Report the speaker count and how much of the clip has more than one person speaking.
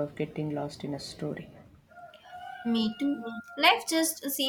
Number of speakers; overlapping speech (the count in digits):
2, no overlap